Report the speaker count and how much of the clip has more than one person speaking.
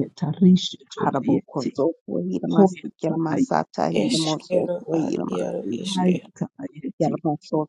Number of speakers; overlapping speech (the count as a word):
three, about 46%